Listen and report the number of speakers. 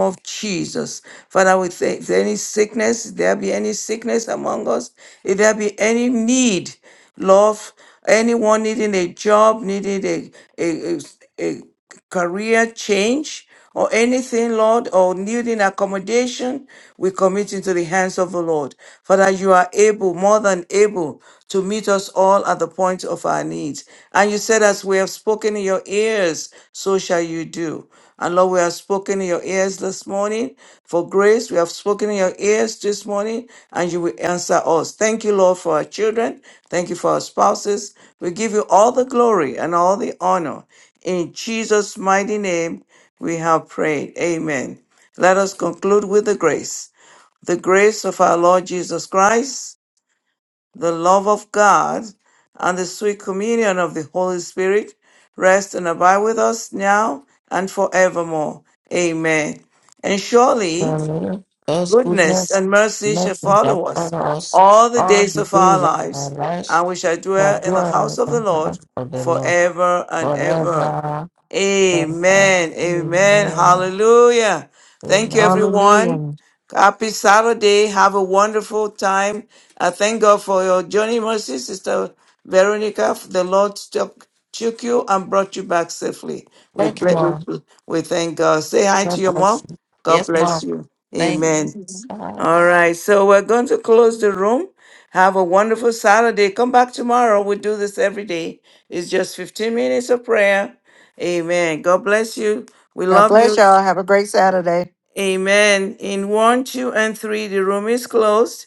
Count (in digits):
3